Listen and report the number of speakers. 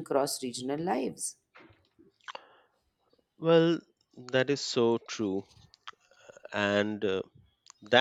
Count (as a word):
two